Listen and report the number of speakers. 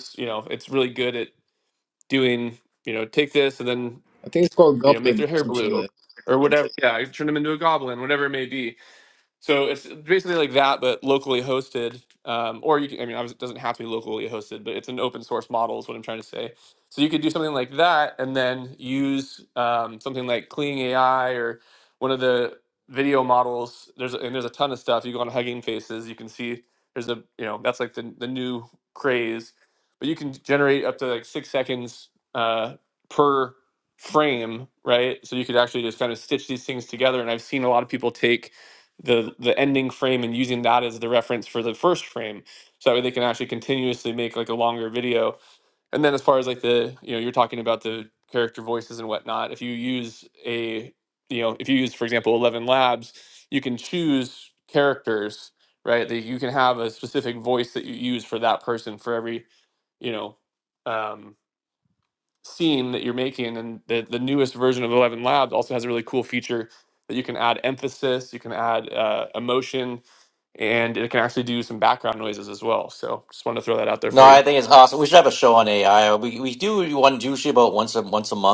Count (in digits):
3